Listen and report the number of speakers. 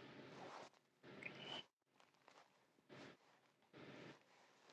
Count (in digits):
0